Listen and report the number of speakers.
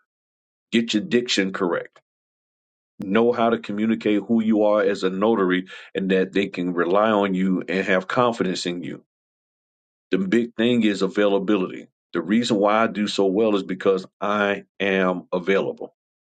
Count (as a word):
one